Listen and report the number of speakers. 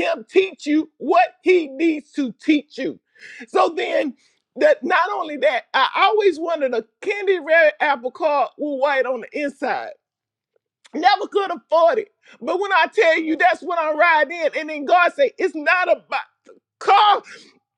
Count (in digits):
1